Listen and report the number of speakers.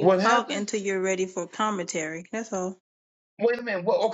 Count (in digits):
2